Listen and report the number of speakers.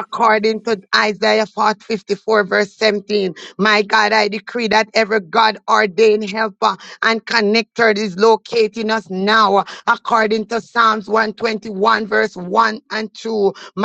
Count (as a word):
one